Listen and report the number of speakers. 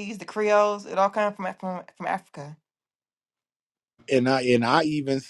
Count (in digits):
2